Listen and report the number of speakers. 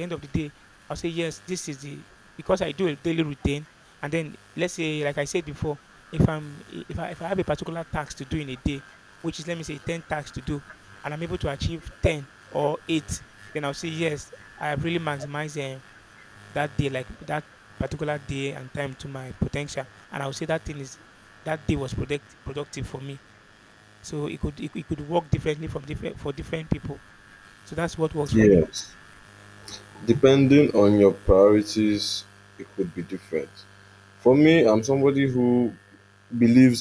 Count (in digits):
2